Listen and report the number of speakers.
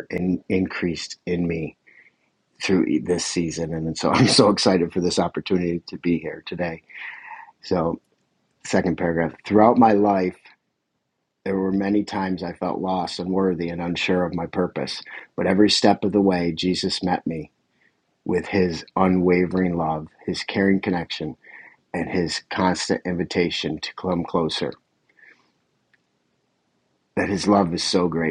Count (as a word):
one